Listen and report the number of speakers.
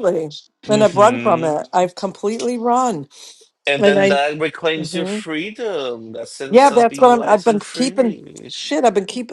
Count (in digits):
2